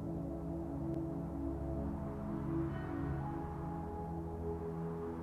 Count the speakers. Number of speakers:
0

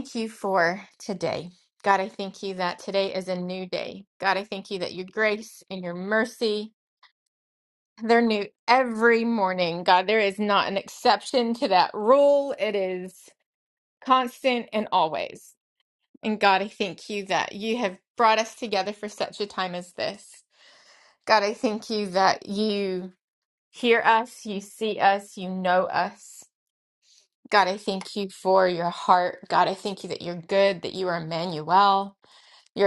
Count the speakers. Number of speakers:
1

